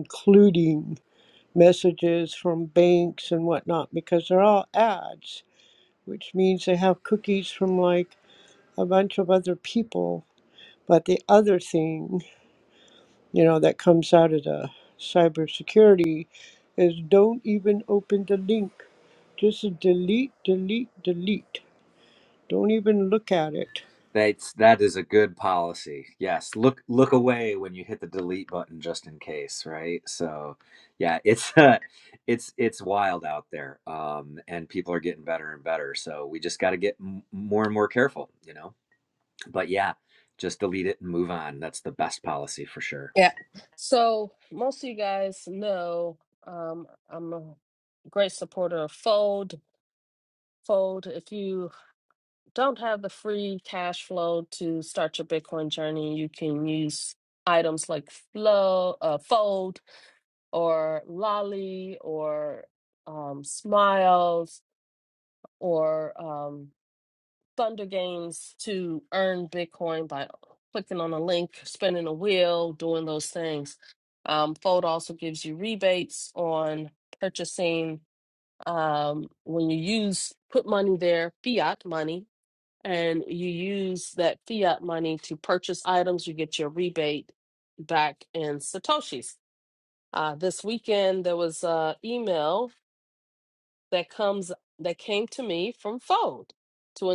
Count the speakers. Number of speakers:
3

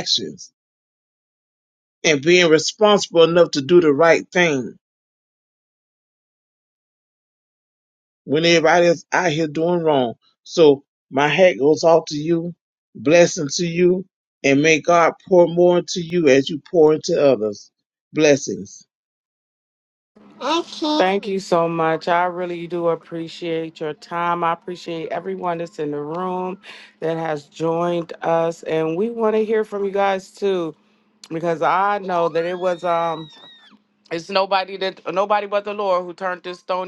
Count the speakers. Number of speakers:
2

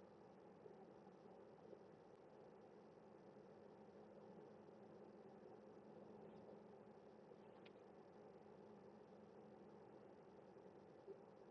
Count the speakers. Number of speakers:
0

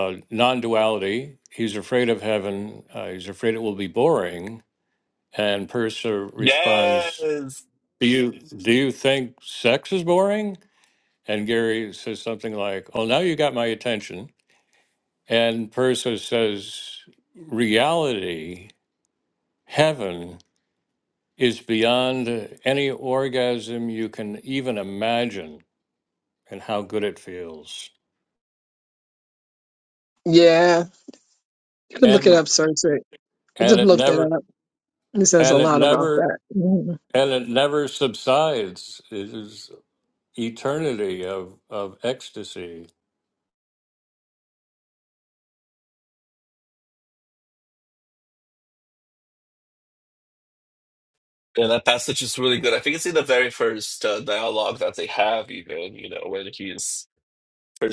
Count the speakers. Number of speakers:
3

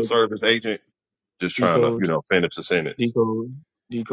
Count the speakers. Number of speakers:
2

